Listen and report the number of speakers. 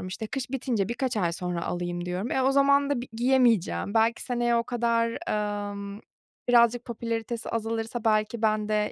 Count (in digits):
1